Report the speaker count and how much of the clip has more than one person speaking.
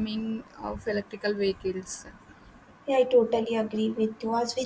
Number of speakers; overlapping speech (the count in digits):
2, no overlap